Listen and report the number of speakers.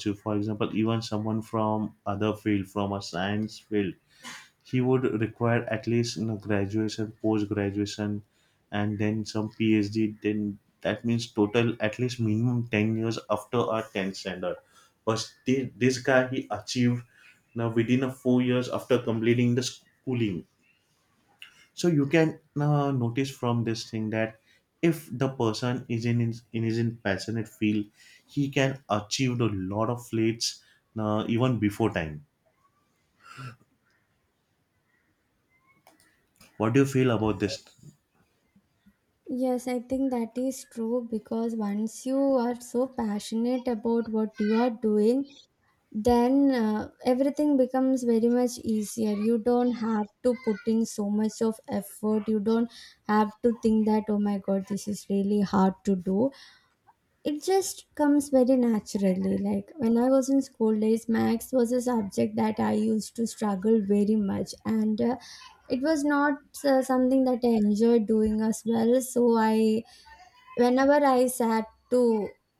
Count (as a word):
two